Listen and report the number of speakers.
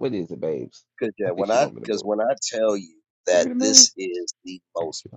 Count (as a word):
two